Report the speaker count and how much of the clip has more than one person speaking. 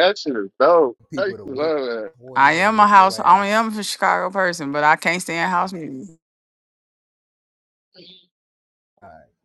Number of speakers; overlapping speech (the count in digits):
3, about 18%